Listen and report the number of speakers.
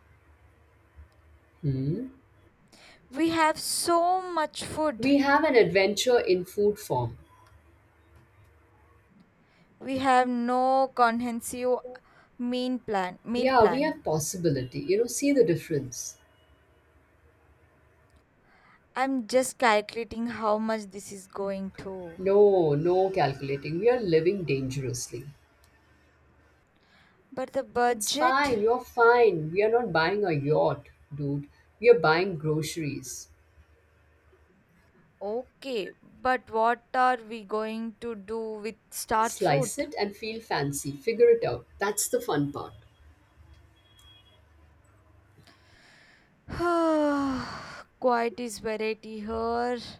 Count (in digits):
2